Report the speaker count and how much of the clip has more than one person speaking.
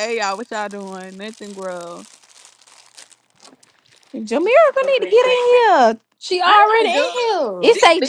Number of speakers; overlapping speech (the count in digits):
3, about 20%